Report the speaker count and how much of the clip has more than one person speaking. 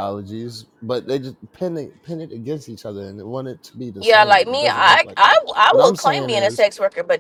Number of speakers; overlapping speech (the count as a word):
two, about 31%